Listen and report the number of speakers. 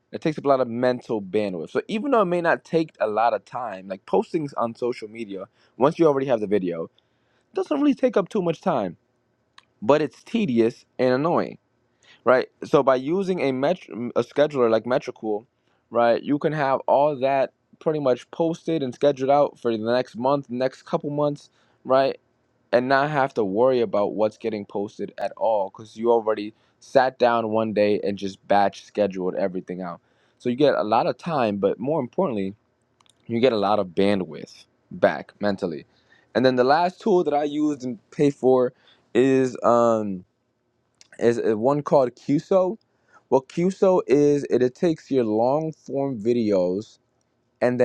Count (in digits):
1